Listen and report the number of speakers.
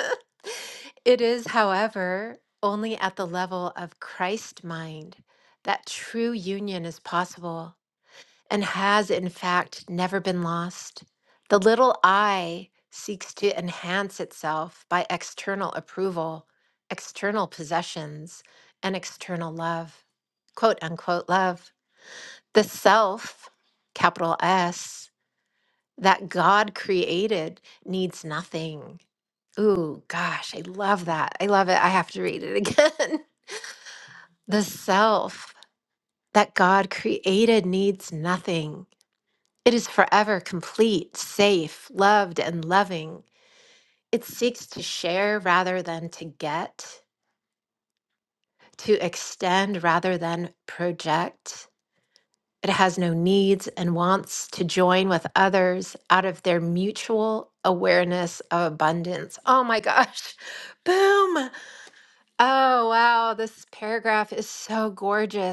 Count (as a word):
one